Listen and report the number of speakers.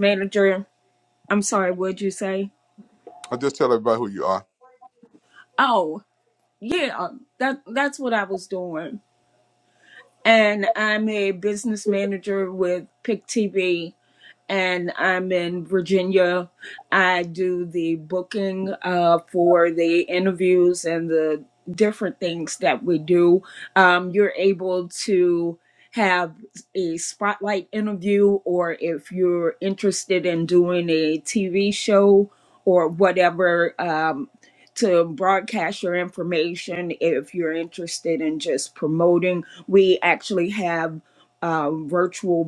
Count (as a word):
two